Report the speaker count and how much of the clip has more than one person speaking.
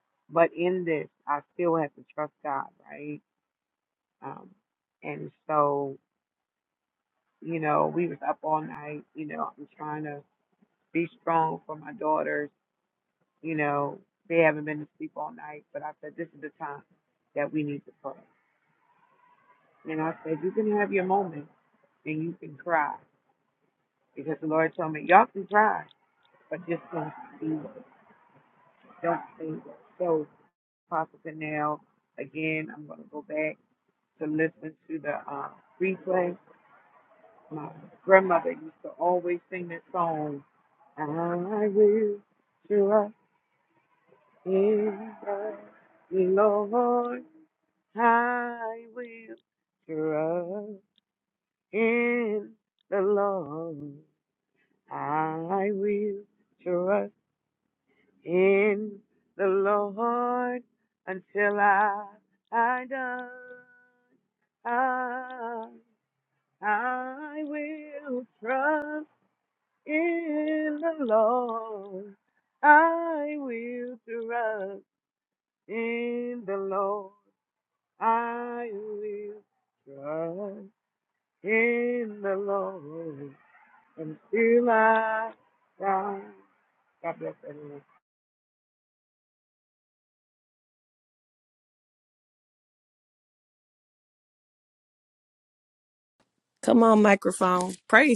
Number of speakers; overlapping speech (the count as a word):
two, no overlap